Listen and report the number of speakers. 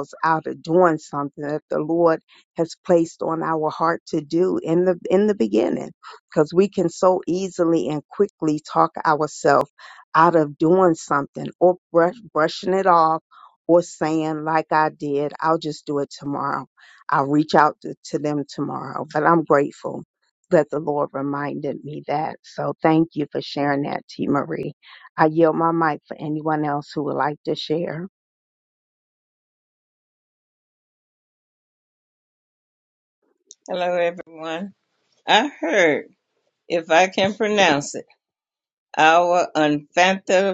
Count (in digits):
2